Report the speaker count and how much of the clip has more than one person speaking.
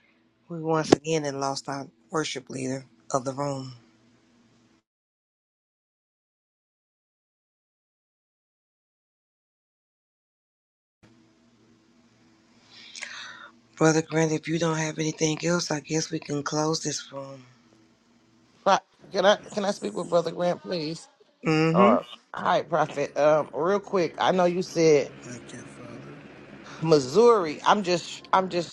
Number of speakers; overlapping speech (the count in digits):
3, about 1%